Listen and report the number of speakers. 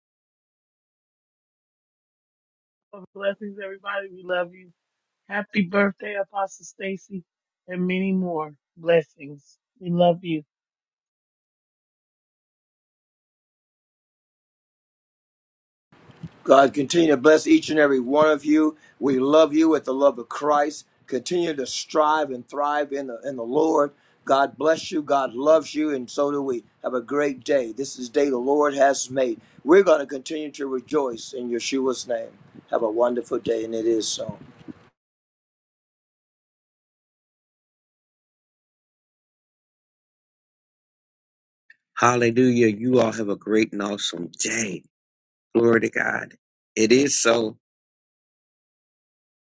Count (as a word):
three